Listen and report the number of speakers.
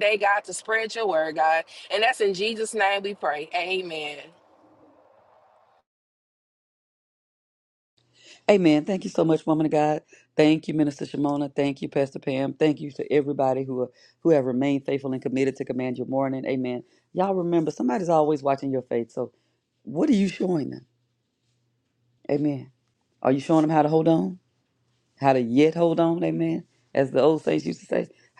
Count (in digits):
2